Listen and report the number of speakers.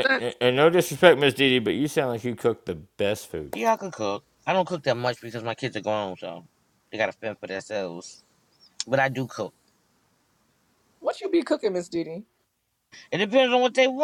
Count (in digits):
3